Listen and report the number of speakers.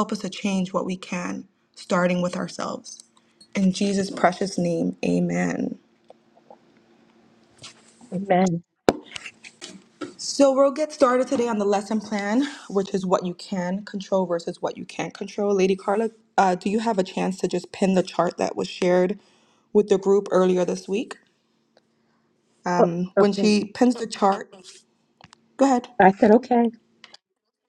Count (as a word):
two